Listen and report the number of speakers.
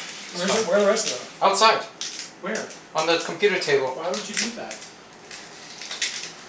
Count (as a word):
two